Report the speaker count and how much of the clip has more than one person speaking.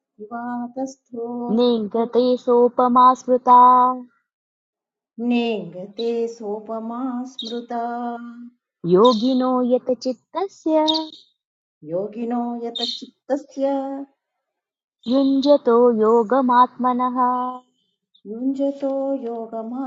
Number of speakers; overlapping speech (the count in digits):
2, no overlap